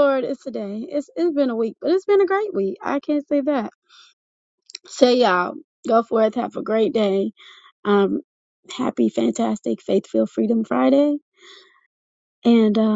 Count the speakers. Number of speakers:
1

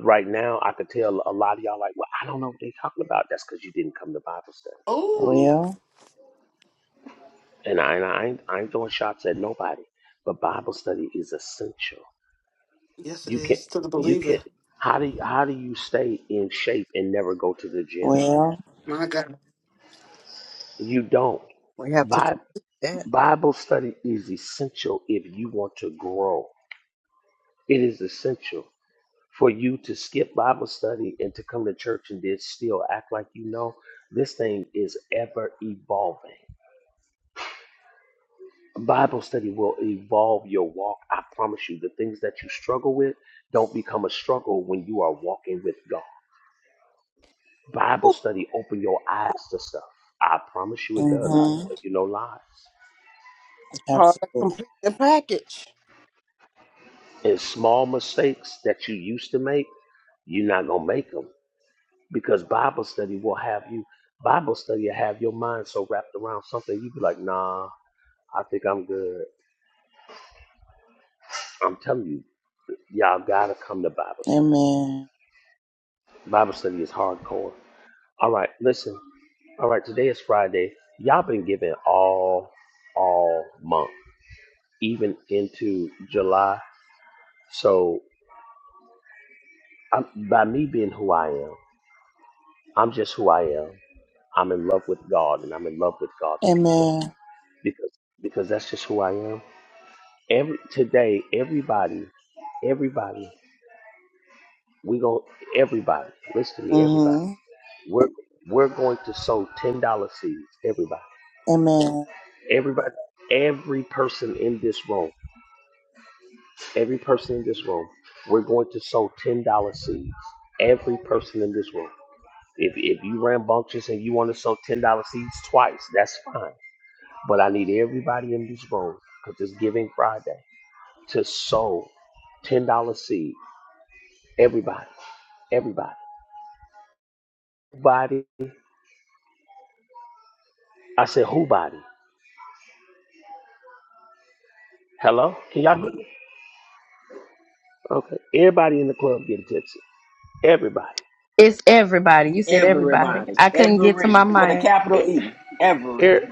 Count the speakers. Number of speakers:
6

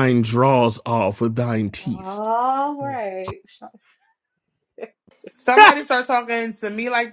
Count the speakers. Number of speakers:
3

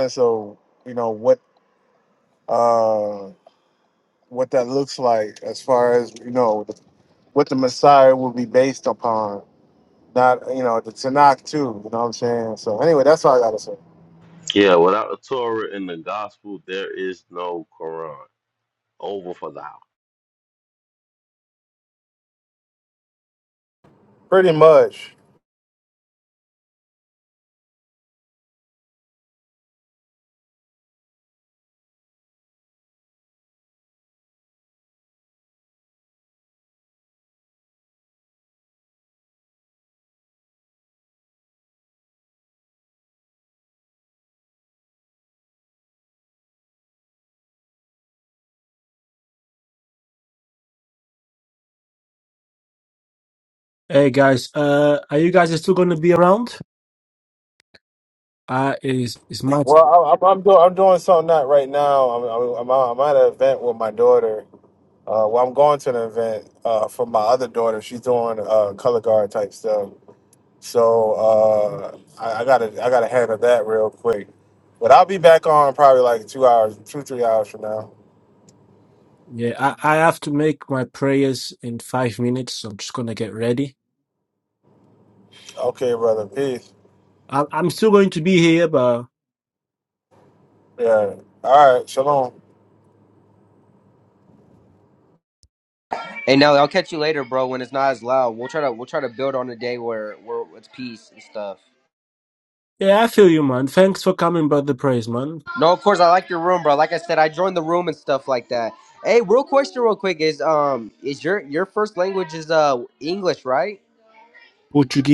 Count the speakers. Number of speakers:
4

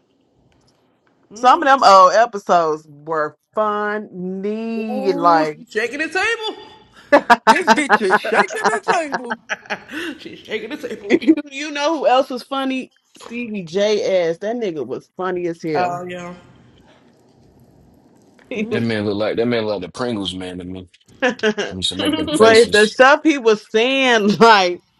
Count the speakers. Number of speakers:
4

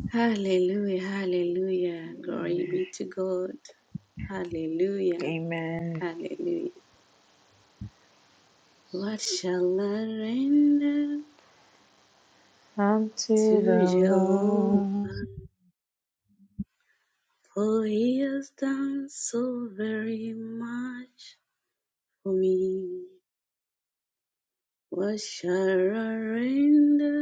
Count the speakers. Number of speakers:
2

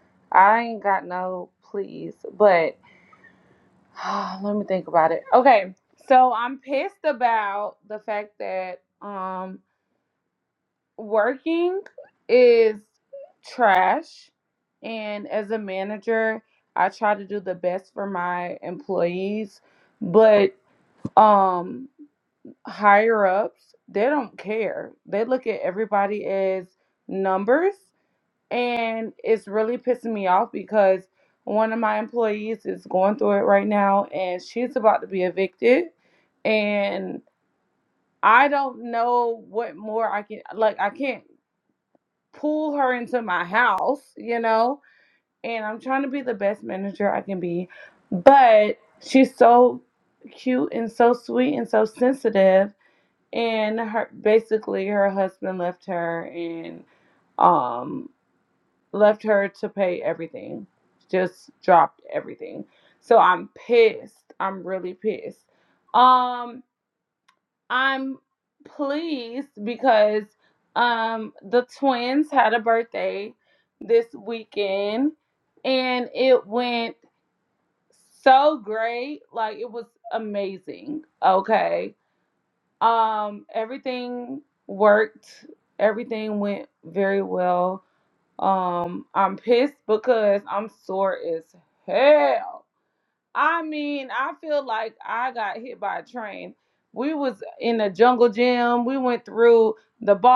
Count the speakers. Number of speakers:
1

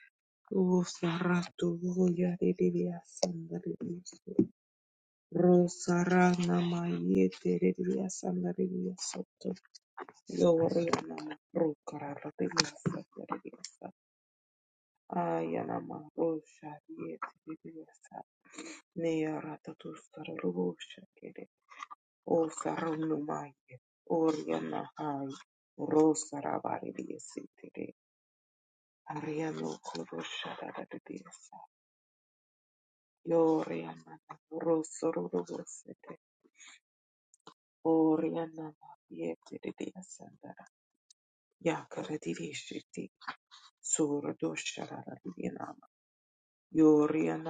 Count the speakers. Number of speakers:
1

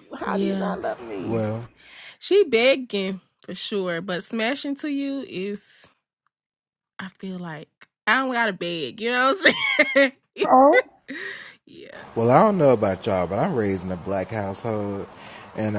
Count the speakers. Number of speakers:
3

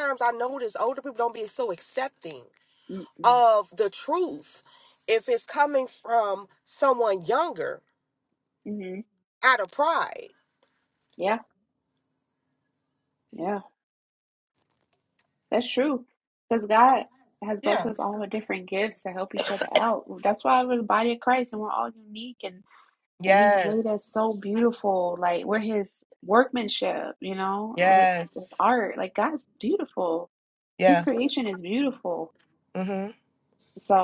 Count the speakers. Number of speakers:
2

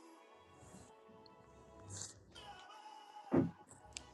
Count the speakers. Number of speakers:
0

